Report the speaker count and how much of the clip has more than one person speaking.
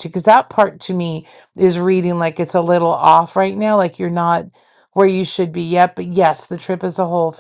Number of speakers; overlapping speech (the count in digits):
1, no overlap